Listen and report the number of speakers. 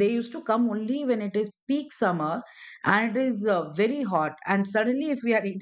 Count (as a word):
one